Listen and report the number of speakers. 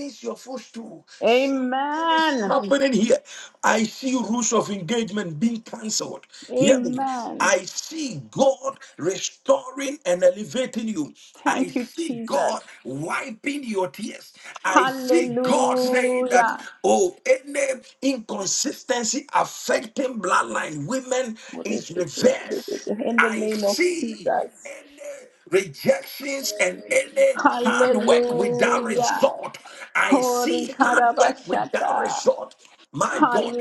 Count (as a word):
two